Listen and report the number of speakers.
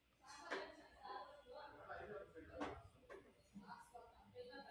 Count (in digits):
0